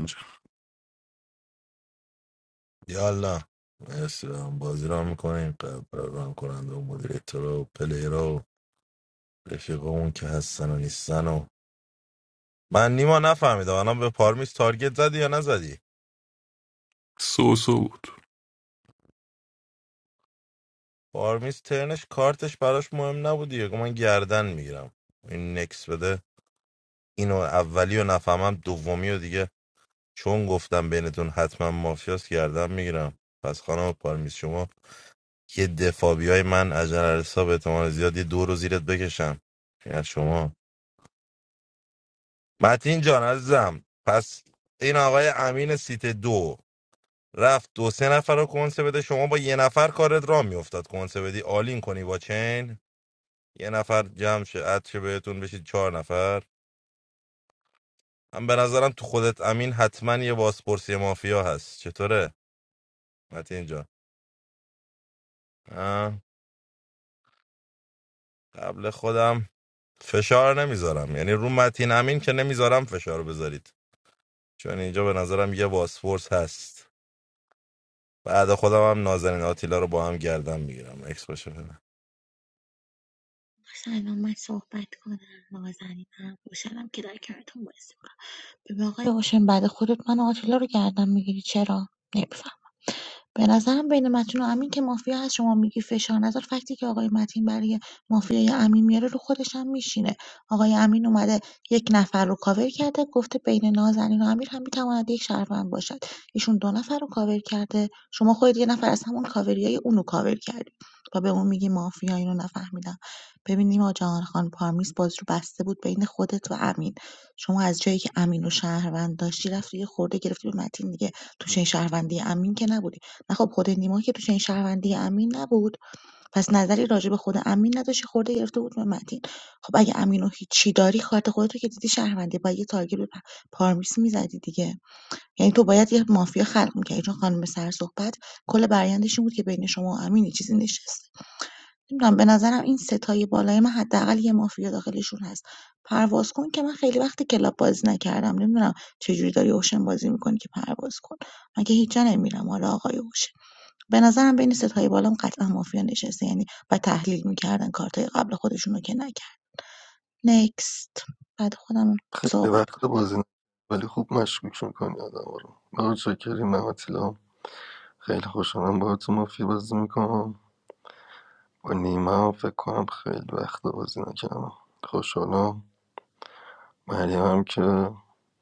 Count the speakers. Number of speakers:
4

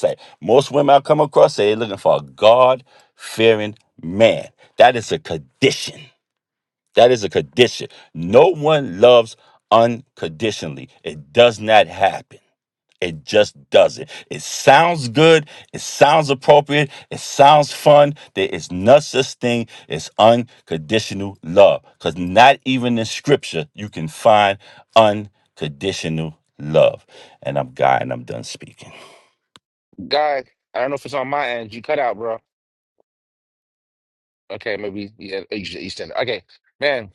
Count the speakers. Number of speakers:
2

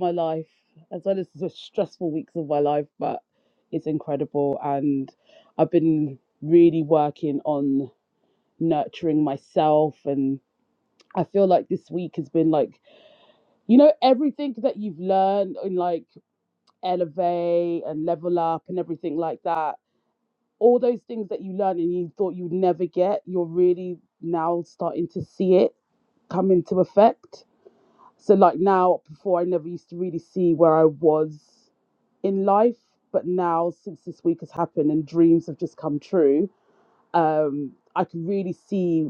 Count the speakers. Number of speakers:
1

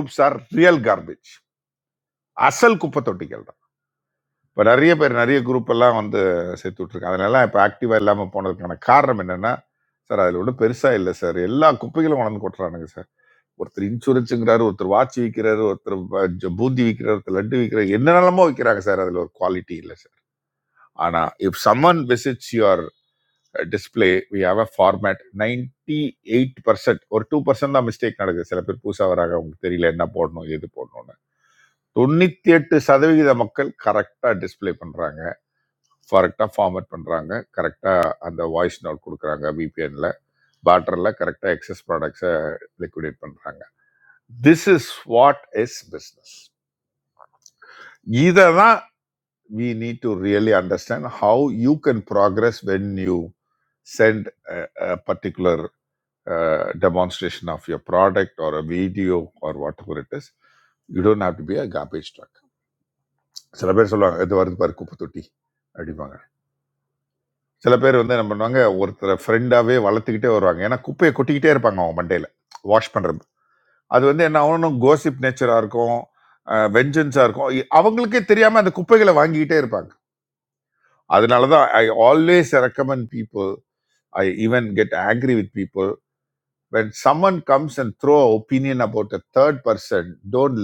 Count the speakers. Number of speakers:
1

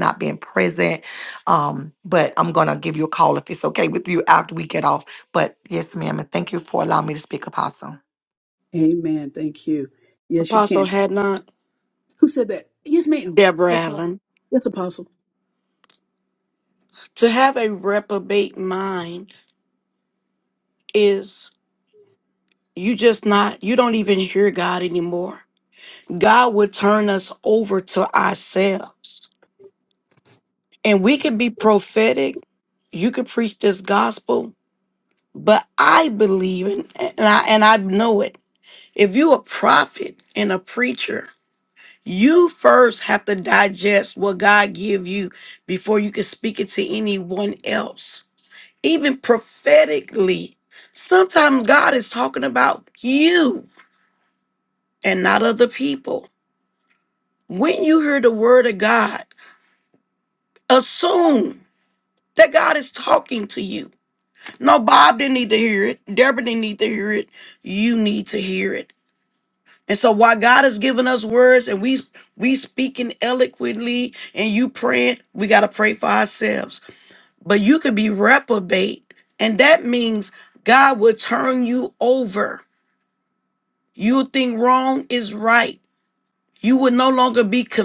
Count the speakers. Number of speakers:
3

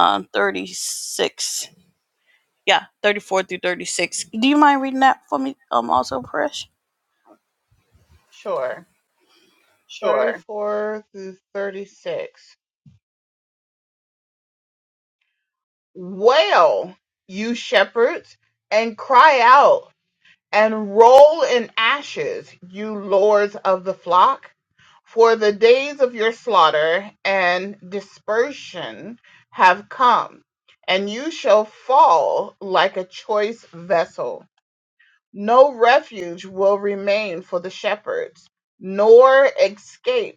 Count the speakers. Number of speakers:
2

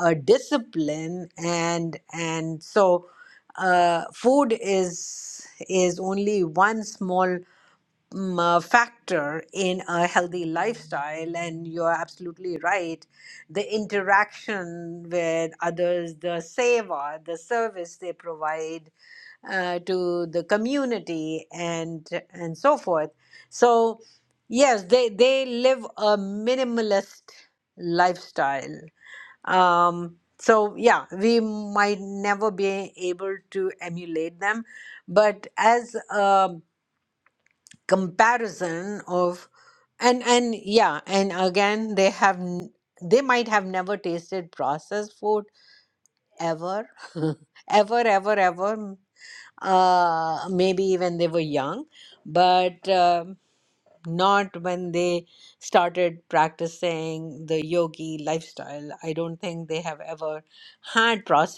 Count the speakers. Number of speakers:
1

